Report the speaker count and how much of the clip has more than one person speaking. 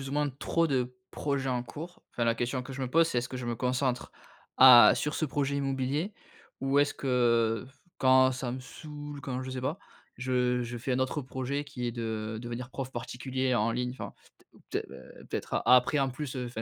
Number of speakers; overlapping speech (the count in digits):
1, no overlap